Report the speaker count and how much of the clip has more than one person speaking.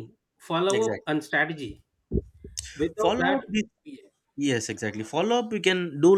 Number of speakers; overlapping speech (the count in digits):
2, about 13%